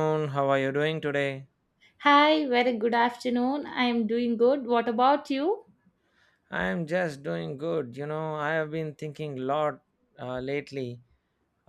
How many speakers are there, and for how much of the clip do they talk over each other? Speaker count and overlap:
2, no overlap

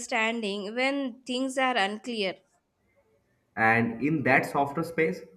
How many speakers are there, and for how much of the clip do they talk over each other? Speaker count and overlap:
2, no overlap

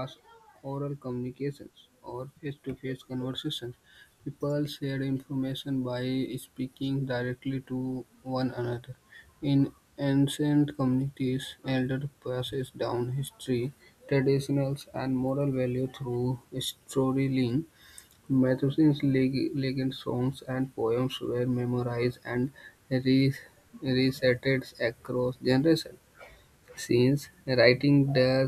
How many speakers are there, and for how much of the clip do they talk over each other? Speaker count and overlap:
1, no overlap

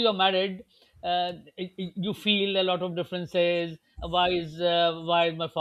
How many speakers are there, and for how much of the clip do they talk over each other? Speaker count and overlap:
1, no overlap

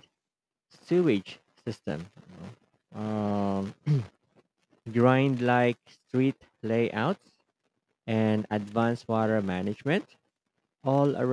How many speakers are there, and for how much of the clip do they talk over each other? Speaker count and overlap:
1, no overlap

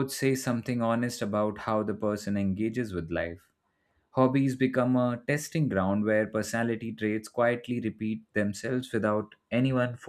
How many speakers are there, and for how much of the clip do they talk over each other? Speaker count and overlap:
1, no overlap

